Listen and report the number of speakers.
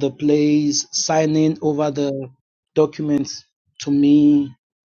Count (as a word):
one